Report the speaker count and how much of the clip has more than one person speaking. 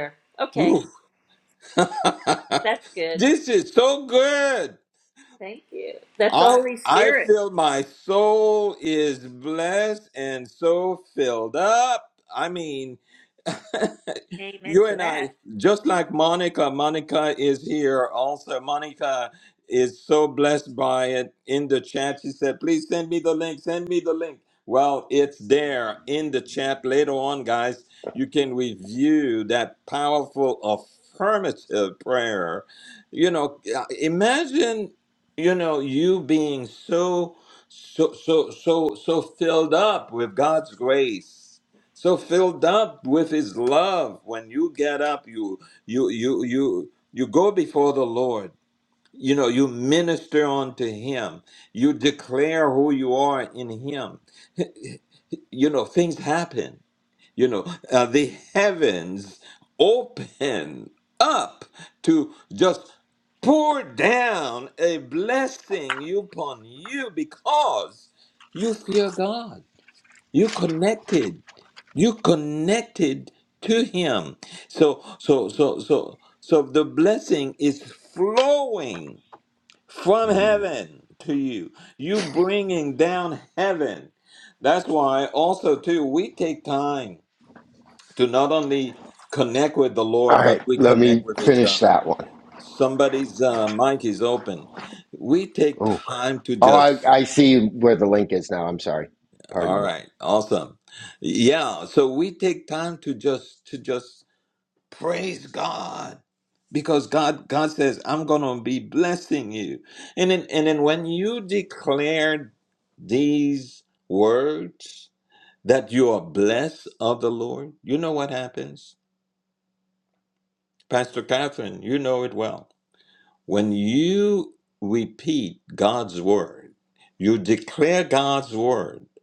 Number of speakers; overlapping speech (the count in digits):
3, about 4%